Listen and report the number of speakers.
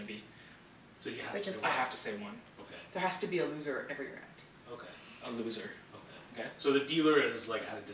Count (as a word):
three